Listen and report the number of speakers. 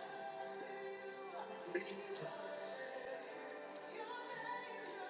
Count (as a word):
zero